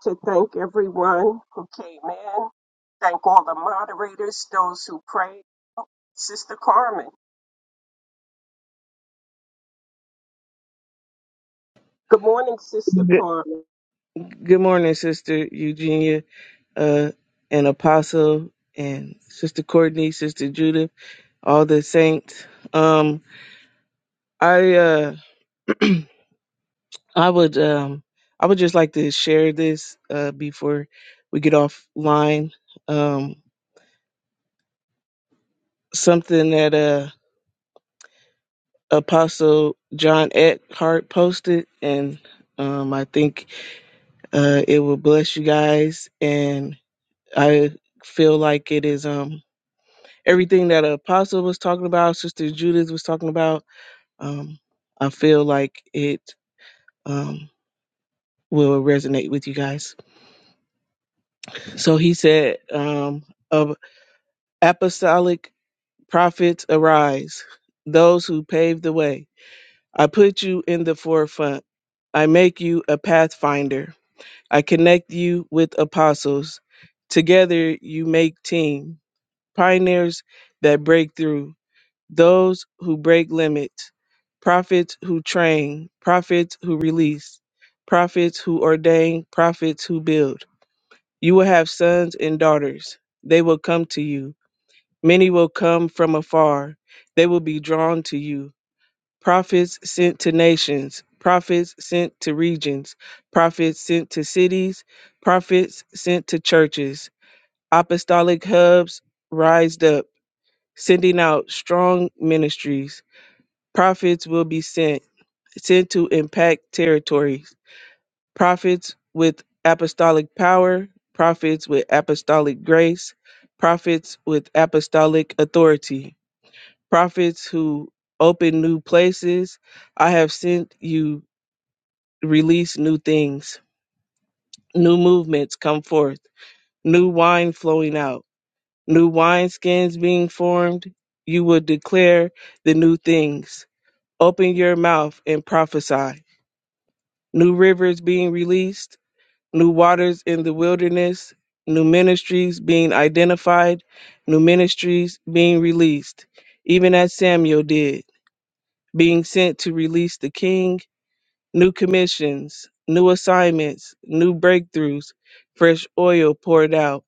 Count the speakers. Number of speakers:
2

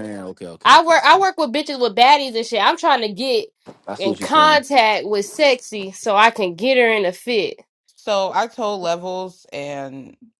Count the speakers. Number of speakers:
3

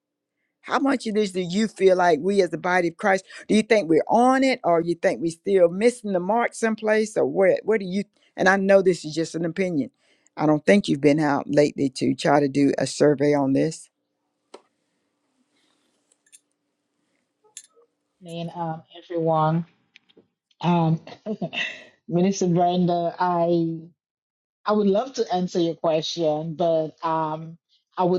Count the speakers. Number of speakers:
2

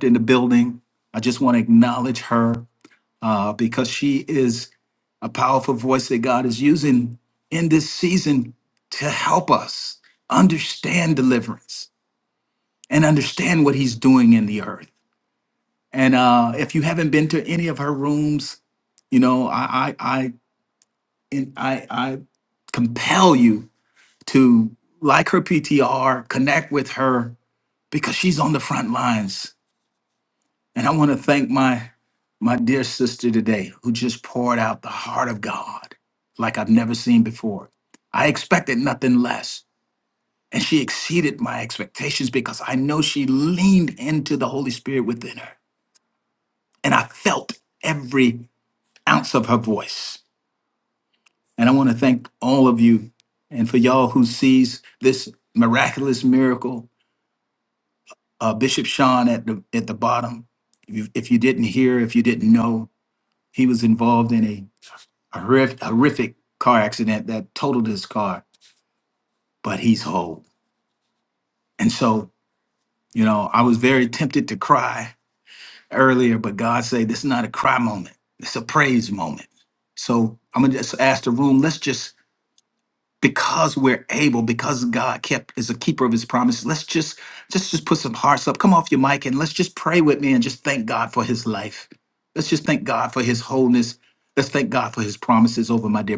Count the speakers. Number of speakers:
1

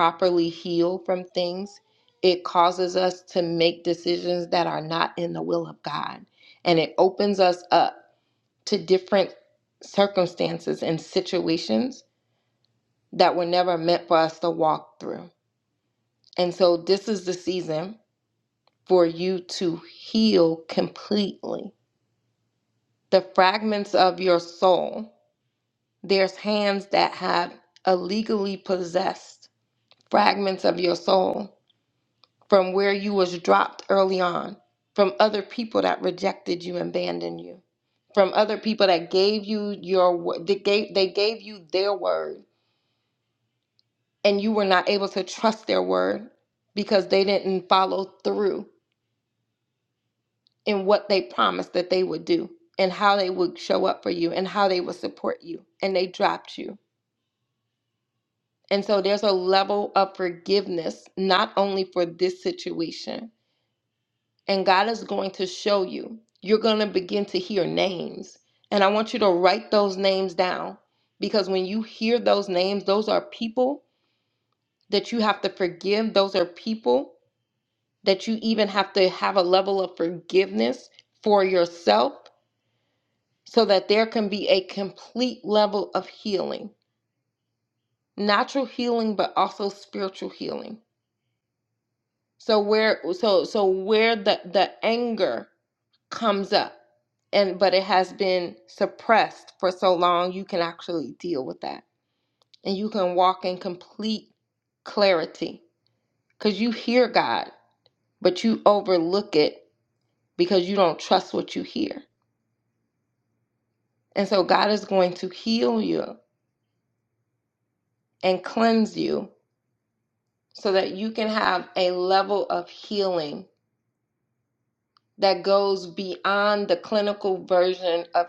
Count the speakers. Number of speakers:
1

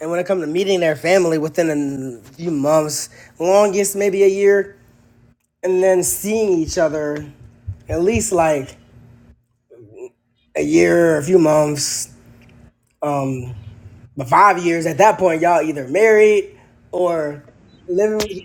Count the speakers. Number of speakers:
1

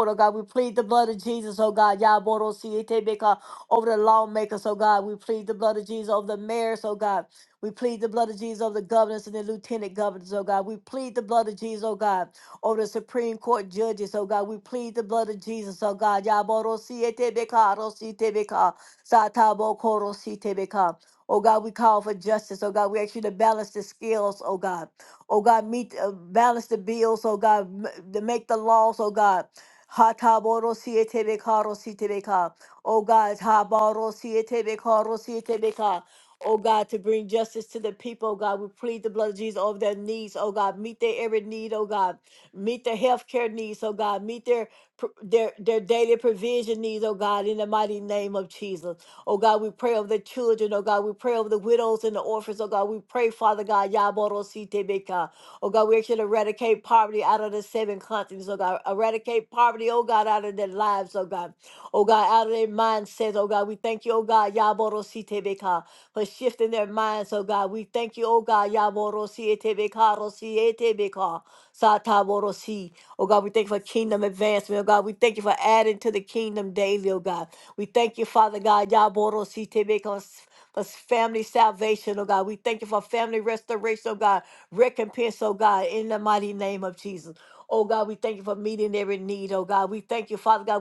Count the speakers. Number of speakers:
1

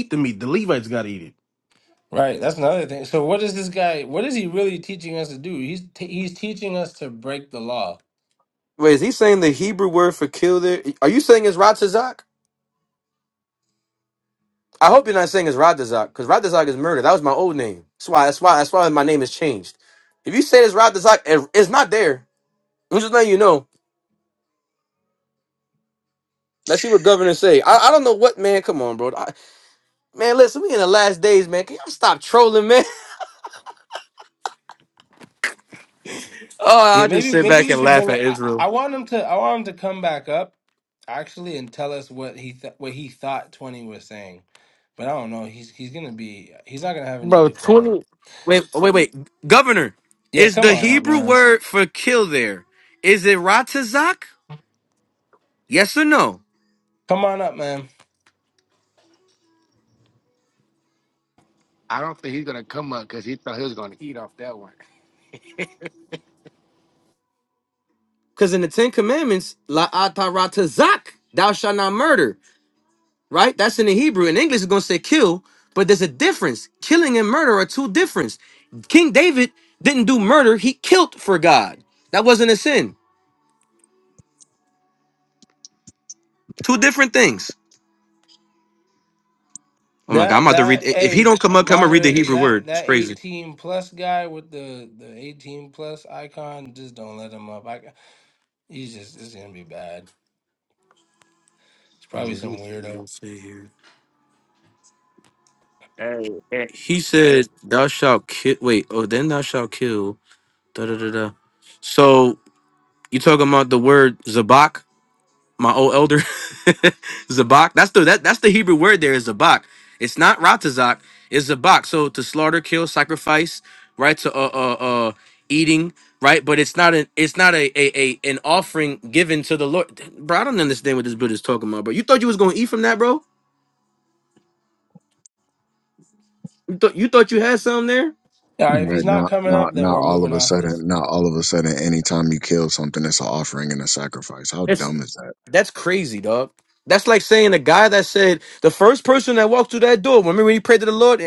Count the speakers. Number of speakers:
5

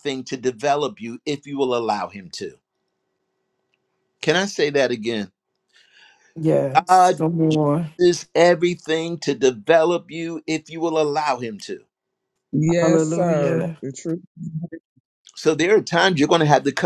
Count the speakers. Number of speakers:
3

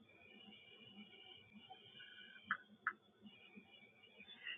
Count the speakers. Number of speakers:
0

